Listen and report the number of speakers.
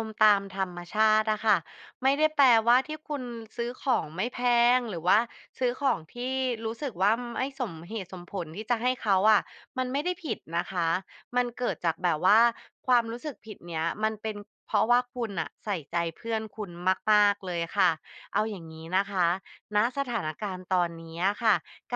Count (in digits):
1